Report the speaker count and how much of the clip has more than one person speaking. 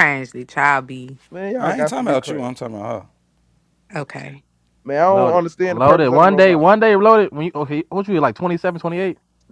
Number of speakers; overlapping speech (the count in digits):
4, about 25%